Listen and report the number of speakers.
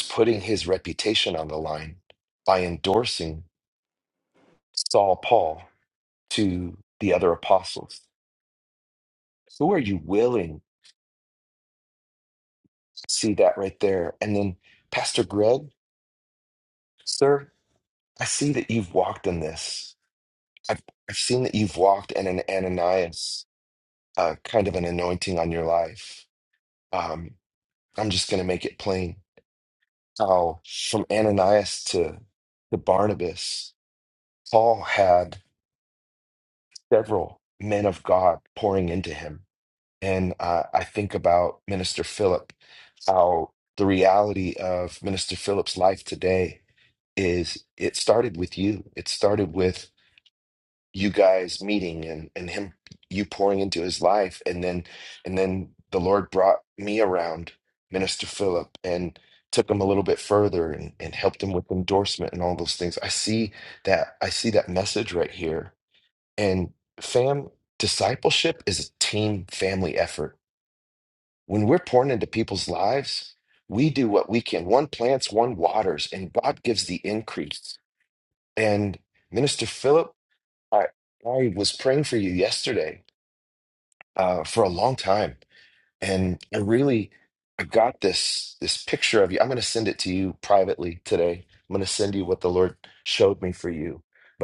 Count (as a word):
one